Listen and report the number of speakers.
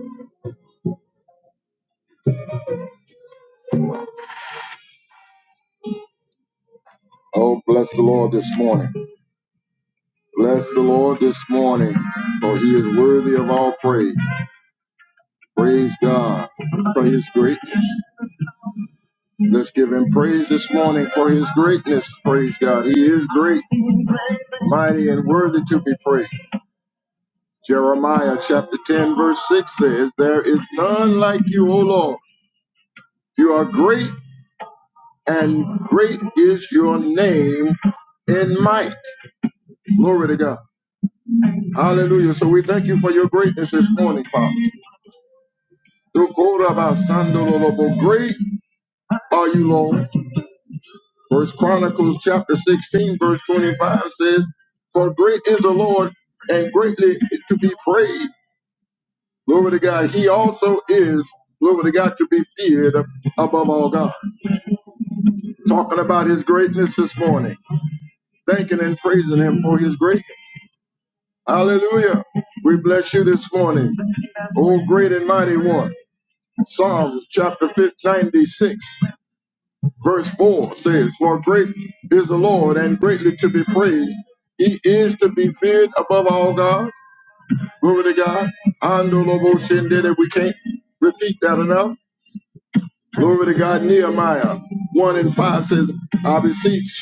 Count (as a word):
one